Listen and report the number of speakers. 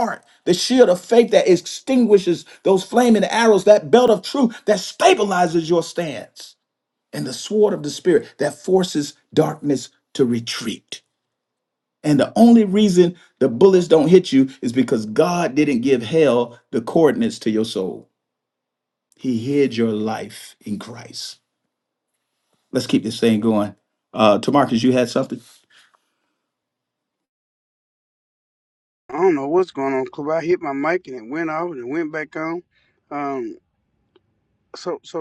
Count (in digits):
2